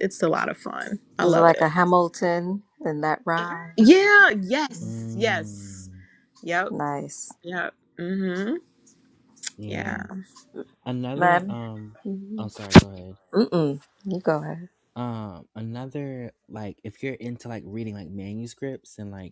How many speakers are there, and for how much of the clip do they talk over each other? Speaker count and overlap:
3, about 8%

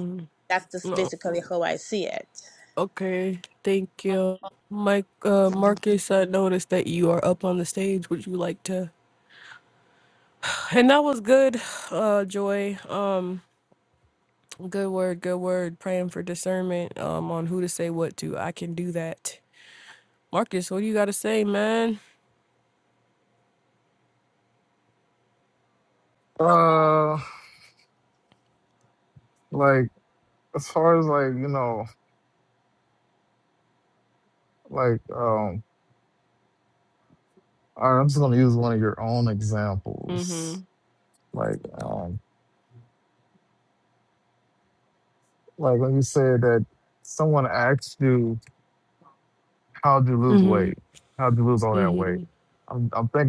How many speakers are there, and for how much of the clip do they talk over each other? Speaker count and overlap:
3, about 3%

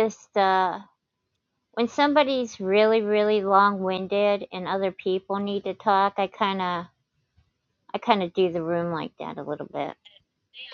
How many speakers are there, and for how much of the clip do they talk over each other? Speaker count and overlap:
1, no overlap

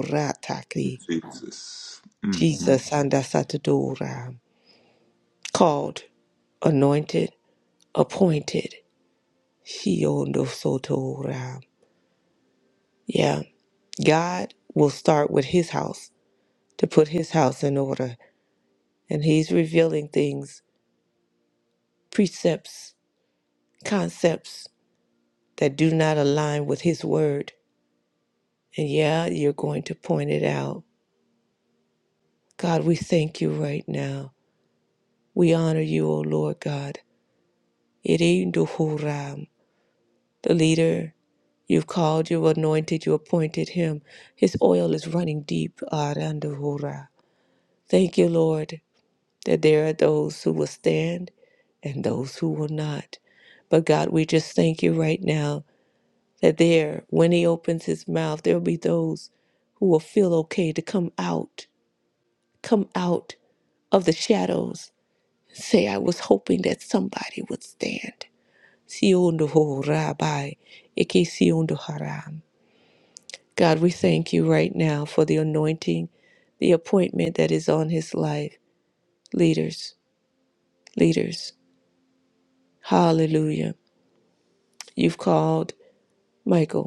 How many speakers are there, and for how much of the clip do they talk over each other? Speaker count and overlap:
2, about 1%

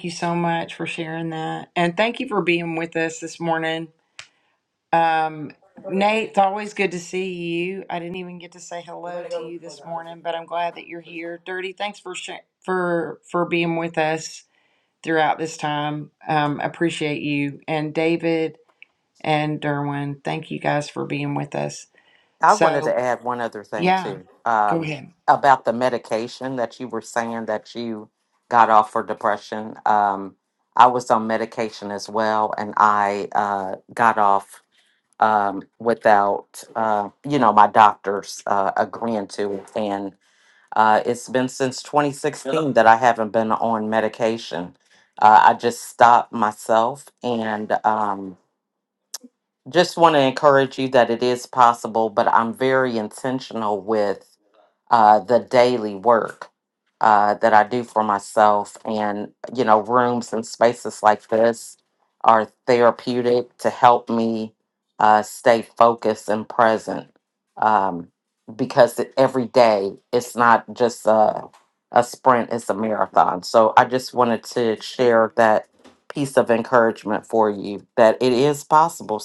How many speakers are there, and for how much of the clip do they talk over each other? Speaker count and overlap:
2, about 1%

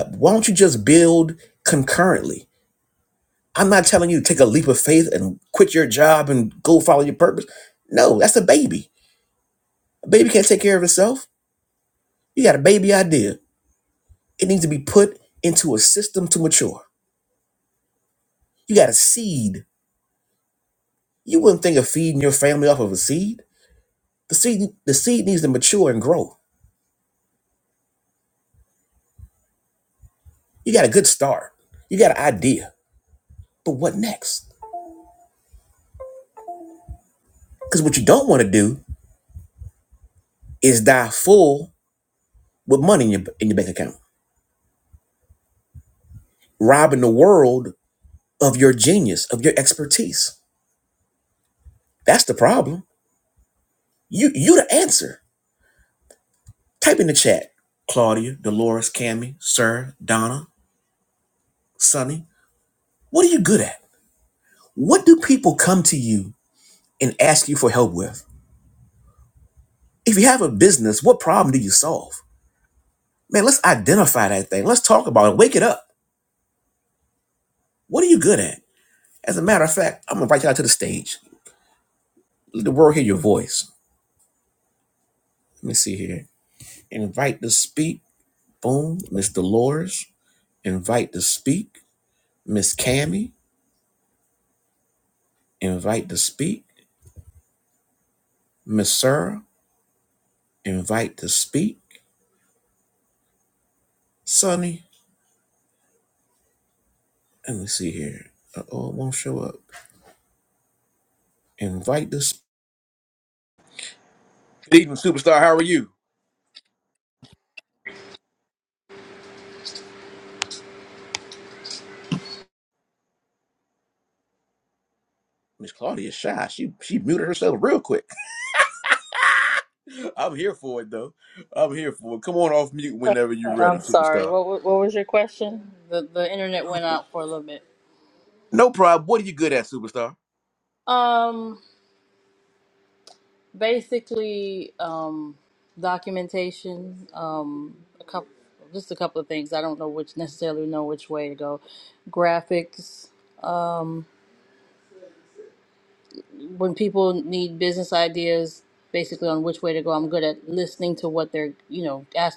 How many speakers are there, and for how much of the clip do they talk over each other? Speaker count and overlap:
2, under 1%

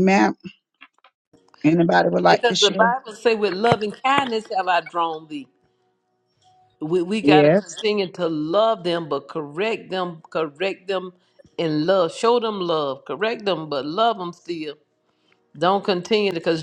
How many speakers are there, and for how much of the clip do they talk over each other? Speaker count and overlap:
2, about 6%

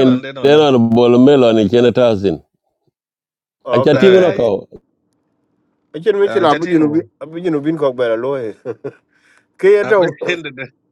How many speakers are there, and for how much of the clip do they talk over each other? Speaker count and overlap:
3, about 22%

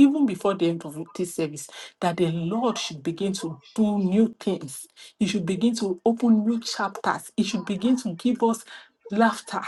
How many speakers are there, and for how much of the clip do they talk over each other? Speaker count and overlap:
1, no overlap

